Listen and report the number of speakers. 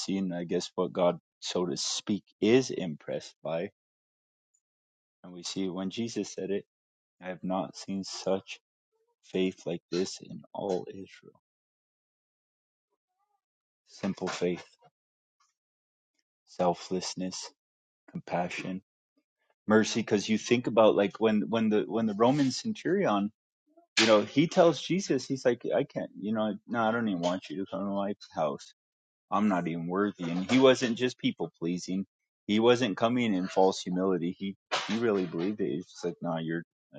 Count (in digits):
1